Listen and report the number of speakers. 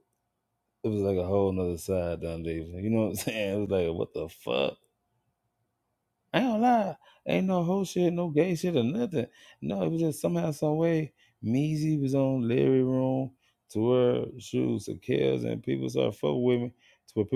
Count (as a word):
one